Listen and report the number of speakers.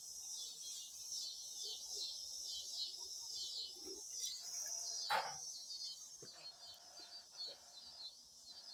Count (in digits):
0